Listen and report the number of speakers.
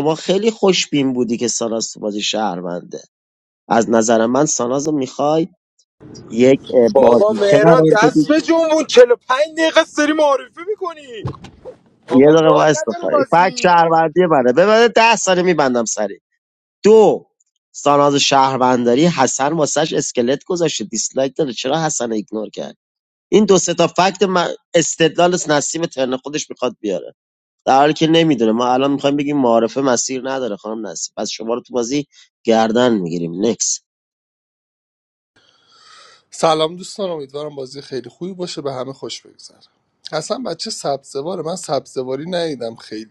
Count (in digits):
3